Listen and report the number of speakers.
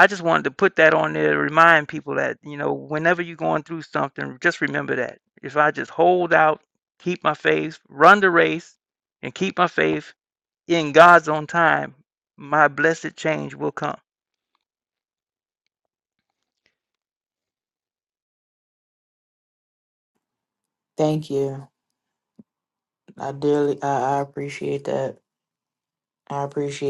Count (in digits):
2